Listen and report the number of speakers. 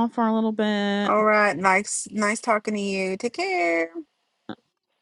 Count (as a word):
two